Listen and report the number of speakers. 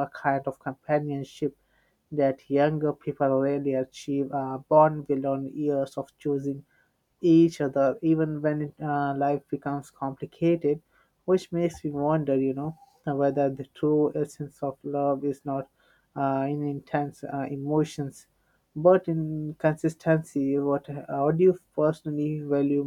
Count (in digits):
1